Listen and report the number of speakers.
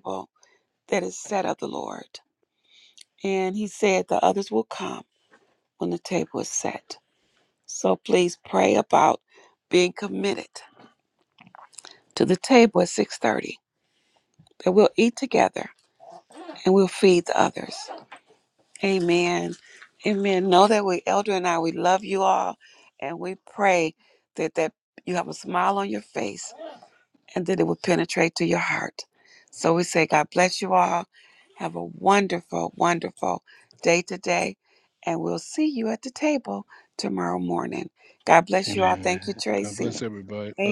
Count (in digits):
2